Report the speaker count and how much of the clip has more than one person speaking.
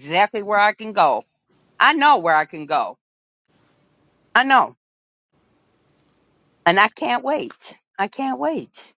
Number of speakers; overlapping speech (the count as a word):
one, no overlap